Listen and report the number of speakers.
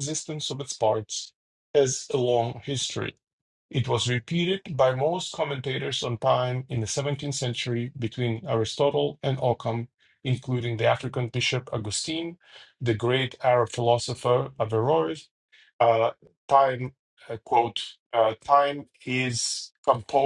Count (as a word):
one